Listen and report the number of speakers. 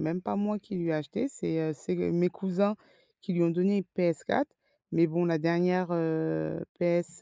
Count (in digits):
1